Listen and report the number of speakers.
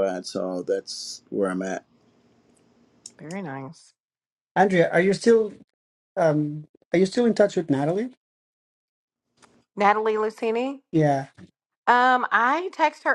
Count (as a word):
three